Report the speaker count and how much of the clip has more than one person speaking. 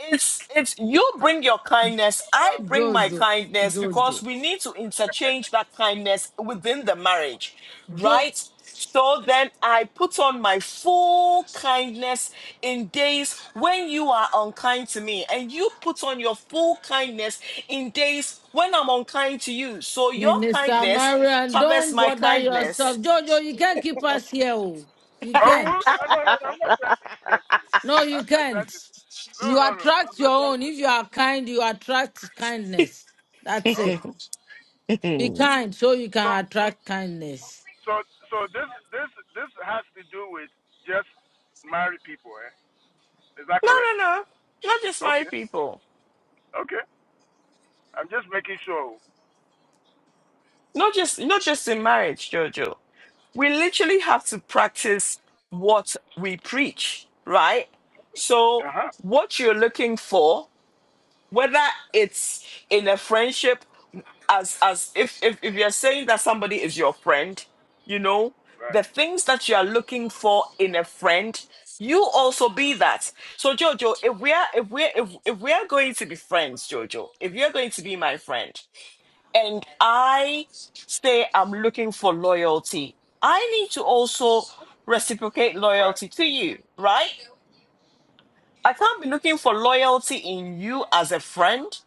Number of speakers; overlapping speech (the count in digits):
3, about 8%